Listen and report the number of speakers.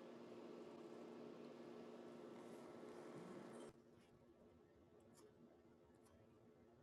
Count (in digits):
0